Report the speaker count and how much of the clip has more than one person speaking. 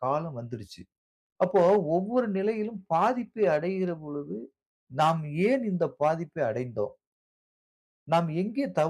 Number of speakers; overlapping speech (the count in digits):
1, no overlap